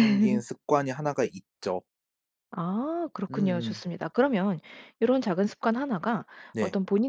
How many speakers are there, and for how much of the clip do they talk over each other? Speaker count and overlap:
2, about 8%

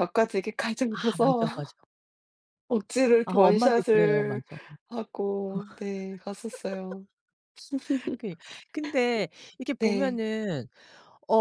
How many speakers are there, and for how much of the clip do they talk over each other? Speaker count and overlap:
2, about 18%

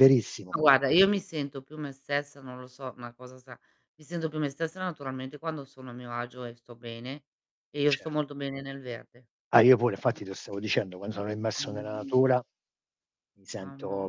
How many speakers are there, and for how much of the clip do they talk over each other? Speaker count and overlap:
2, about 11%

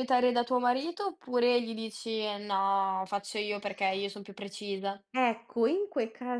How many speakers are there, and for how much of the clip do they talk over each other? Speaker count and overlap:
2, no overlap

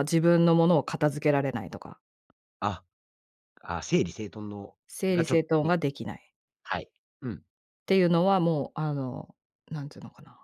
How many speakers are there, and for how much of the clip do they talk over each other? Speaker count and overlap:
2, about 6%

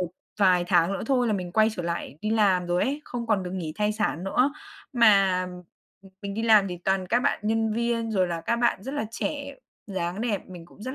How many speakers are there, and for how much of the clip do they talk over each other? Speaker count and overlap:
1, no overlap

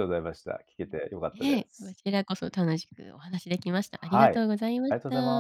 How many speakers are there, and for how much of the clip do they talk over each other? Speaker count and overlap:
2, about 21%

